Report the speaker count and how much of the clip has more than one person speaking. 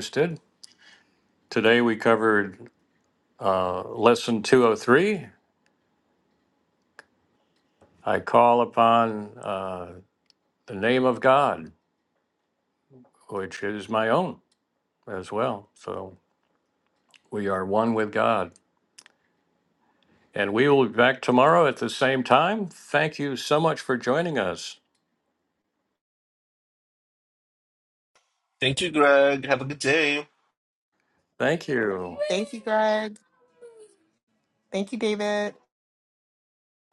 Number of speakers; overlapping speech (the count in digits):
3, no overlap